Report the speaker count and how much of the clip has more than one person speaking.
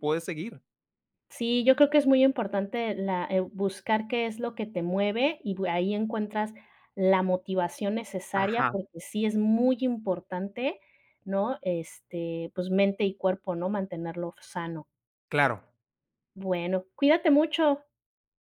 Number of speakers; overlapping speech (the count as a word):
two, about 2%